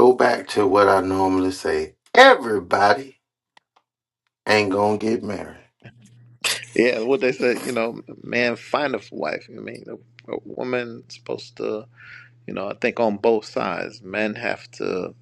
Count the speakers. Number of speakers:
two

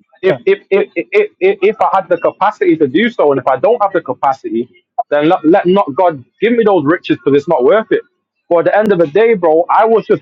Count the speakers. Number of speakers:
one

